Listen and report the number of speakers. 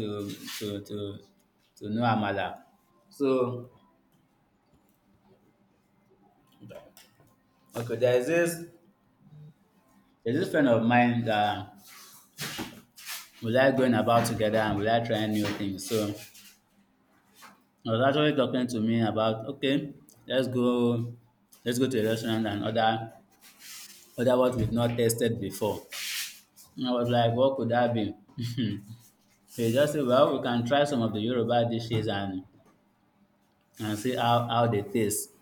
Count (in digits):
1